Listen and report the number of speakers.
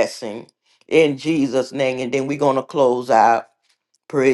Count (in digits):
1